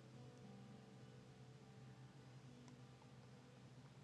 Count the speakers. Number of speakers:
0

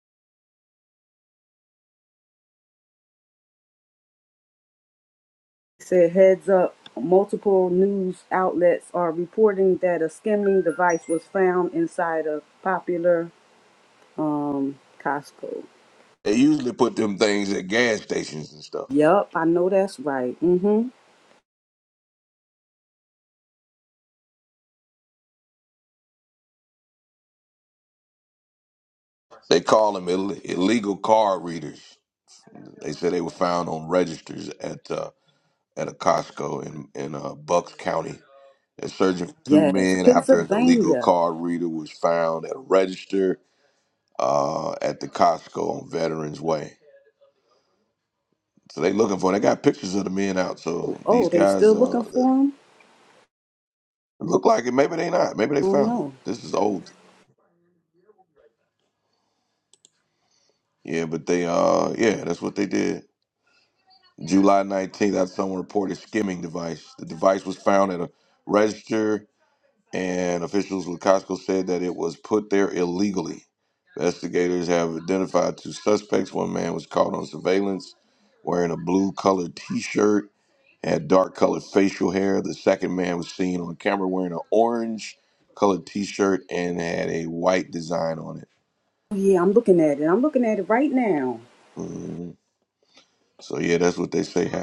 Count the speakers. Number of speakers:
2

